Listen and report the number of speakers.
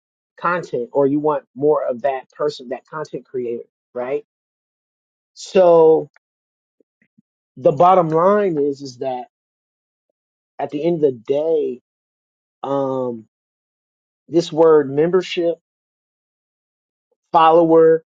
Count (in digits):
1